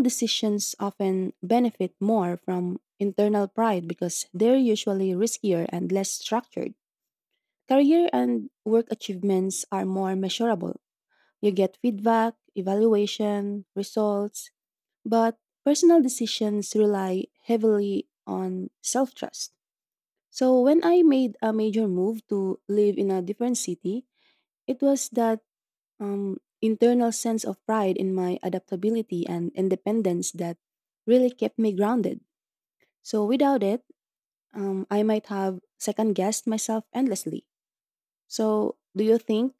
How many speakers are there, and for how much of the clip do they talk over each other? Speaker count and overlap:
one, no overlap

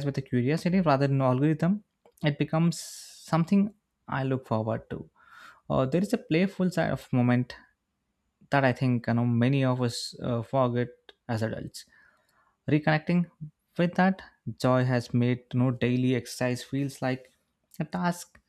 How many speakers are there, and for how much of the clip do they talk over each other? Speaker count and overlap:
one, no overlap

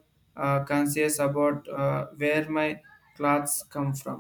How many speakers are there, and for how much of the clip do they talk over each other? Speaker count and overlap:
one, no overlap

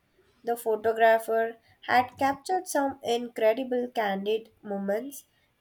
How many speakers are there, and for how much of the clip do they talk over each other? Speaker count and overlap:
one, no overlap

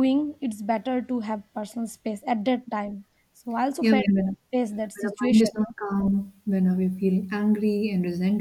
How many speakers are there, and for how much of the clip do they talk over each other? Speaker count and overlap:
two, about 10%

